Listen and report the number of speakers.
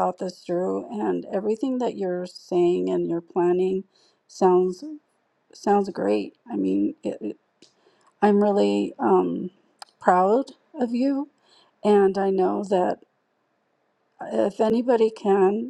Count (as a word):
one